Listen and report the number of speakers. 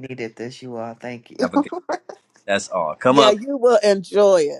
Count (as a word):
three